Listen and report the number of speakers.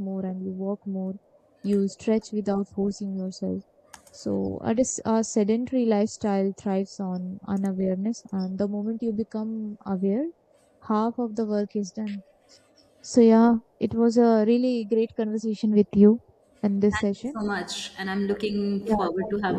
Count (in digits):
2